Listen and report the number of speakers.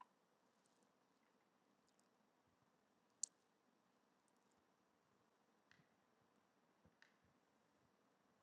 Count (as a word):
zero